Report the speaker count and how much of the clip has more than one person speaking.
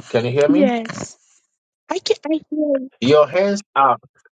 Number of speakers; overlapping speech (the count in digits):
2, about 6%